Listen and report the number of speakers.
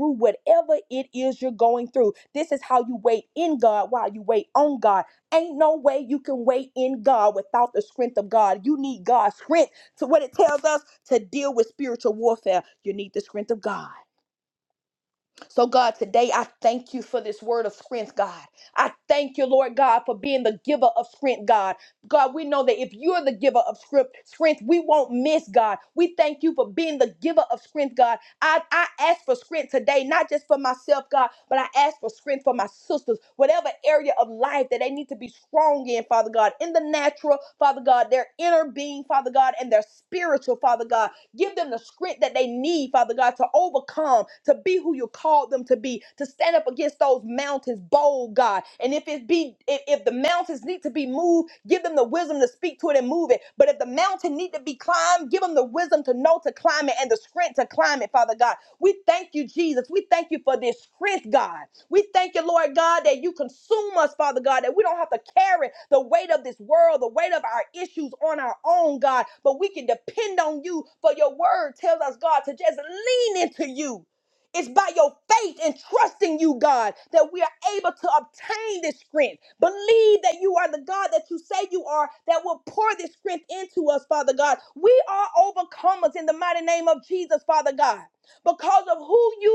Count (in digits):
1